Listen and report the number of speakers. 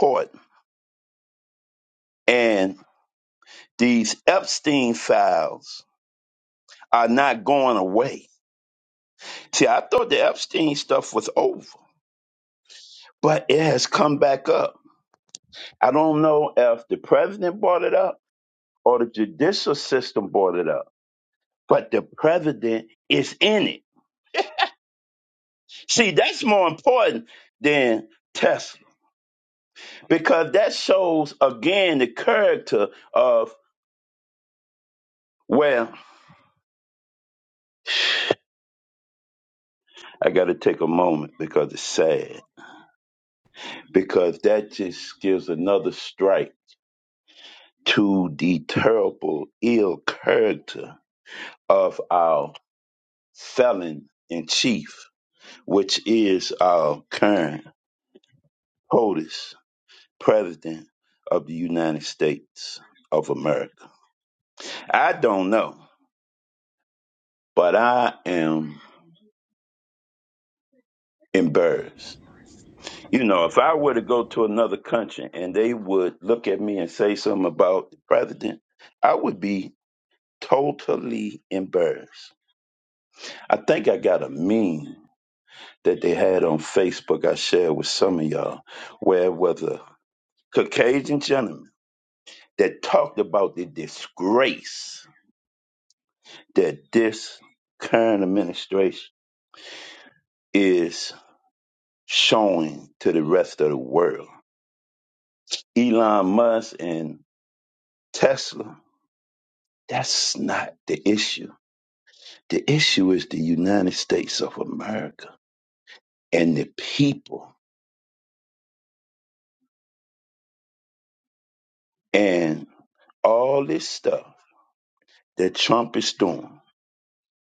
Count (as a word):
one